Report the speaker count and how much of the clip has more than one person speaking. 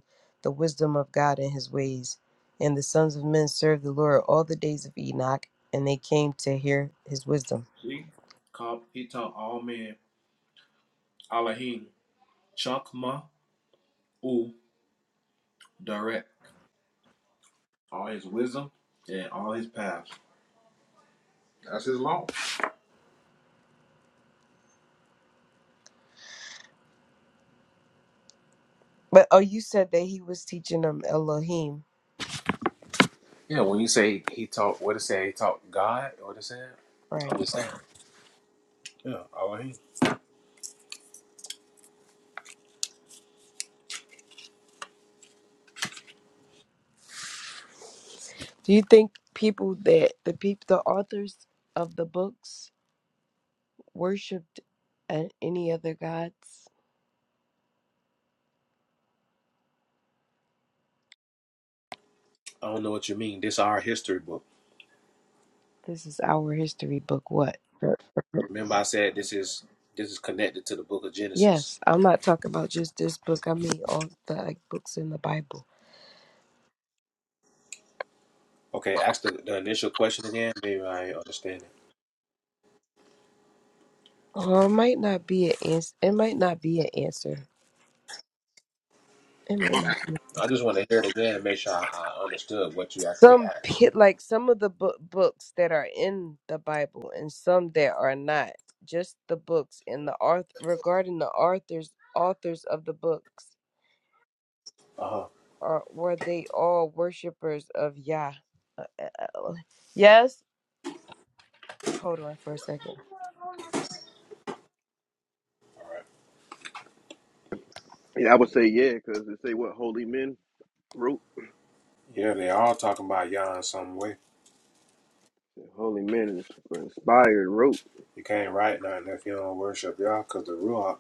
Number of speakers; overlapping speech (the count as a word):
three, about 1%